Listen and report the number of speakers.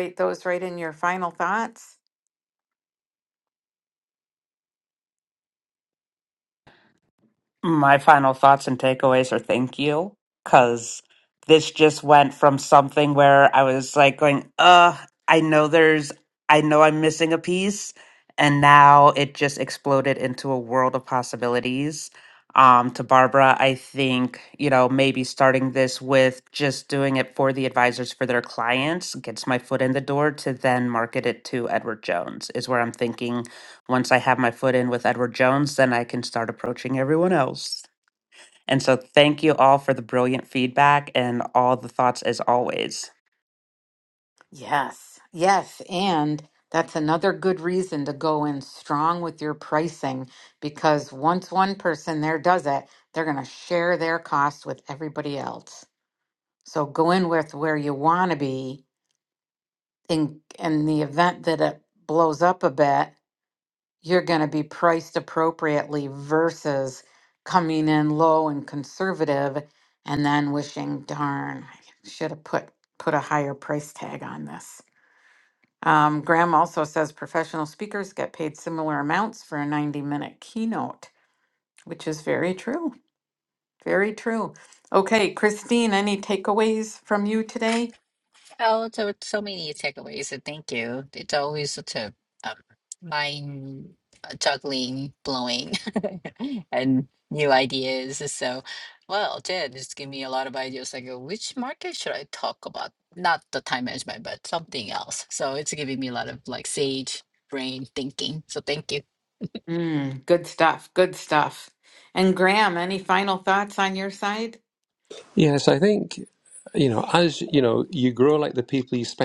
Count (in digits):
4